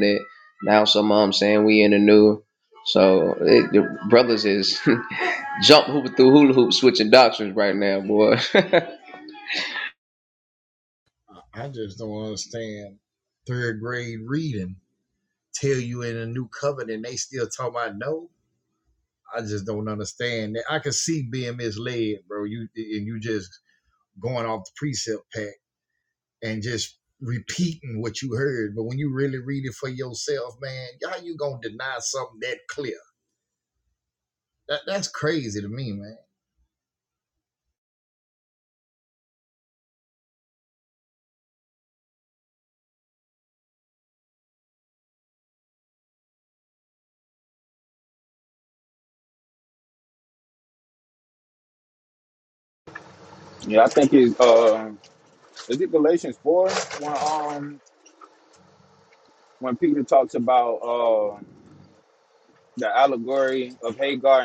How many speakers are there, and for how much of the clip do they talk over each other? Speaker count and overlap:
3, no overlap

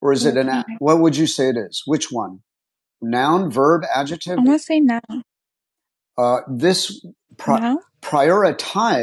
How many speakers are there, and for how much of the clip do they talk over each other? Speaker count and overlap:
2, about 9%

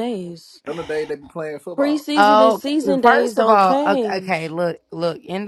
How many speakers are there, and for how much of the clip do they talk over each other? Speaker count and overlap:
3, about 38%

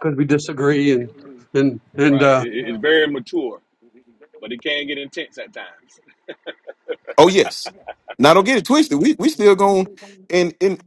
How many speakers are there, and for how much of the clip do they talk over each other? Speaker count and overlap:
3, about 3%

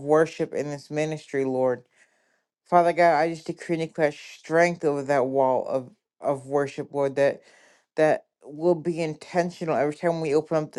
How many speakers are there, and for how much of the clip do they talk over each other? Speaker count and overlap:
1, no overlap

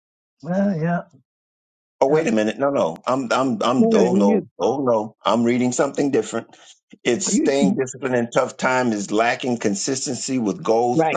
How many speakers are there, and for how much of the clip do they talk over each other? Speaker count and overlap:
2, about 14%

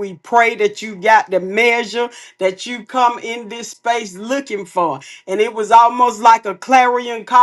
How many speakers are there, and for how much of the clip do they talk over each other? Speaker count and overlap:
1, no overlap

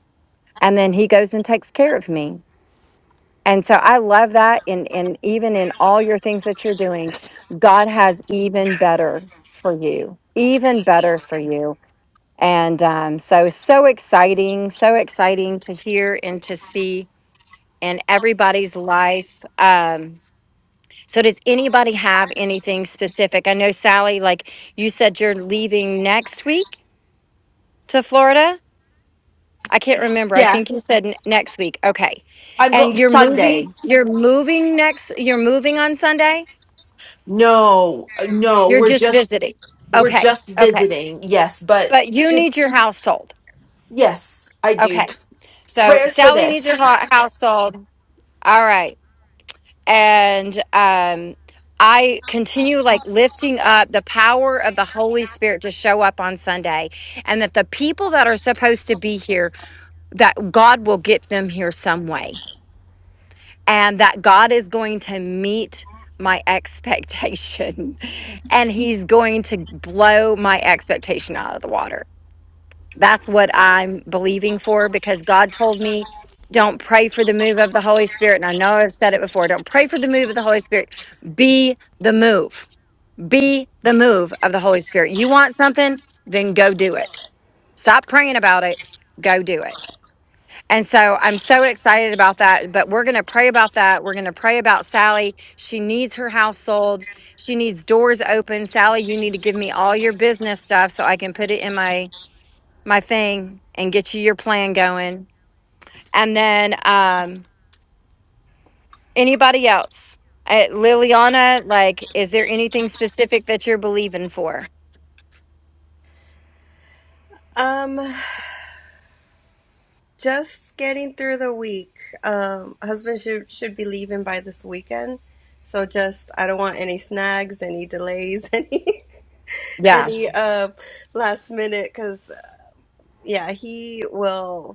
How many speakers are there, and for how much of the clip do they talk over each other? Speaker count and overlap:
3, about 3%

